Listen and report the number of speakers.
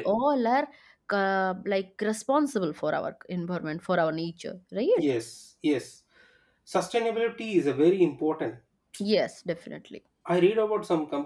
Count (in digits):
2